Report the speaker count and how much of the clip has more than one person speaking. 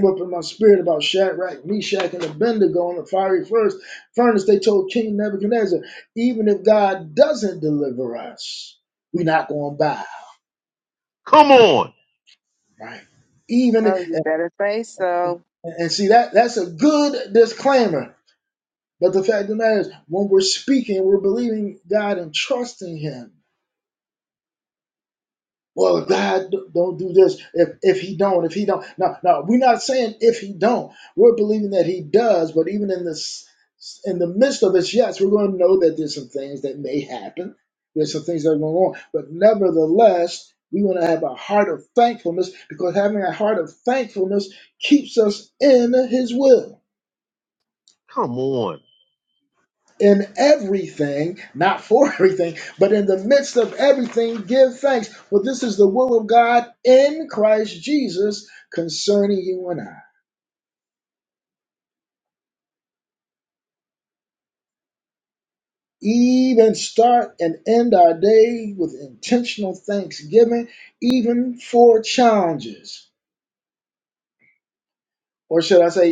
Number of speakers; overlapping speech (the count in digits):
3, about 1%